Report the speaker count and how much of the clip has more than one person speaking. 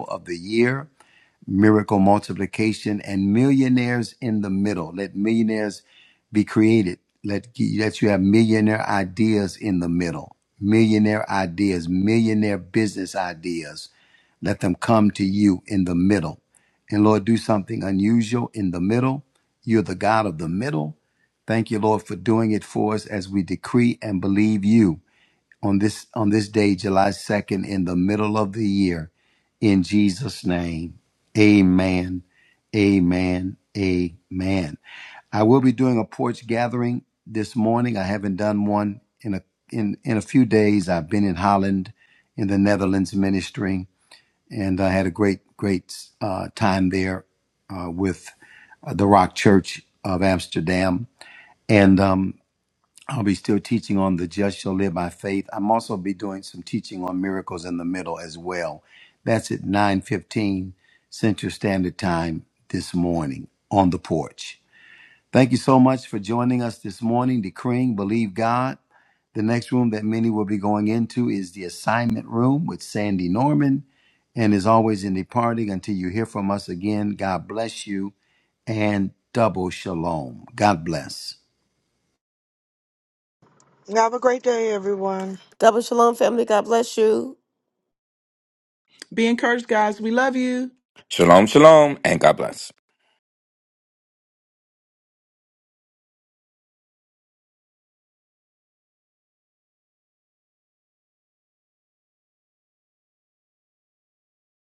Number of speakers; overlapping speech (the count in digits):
5, no overlap